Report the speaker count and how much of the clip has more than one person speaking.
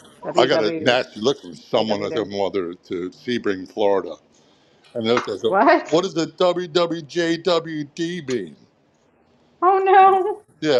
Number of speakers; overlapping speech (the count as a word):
two, about 7%